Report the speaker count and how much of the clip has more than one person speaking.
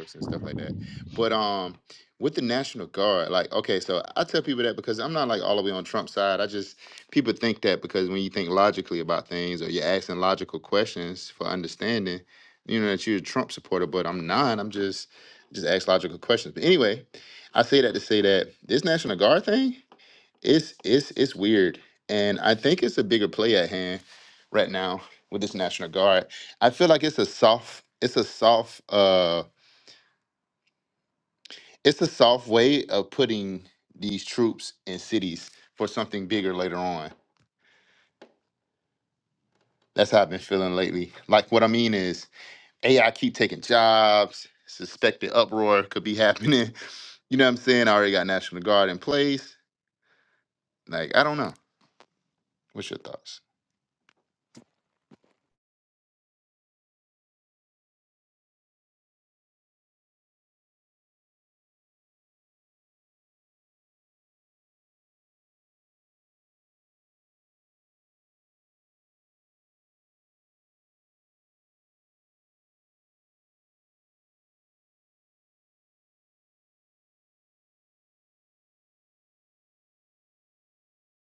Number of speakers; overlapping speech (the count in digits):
1, no overlap